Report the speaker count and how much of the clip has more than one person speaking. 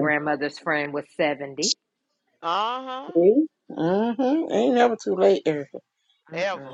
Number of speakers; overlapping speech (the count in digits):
3, about 6%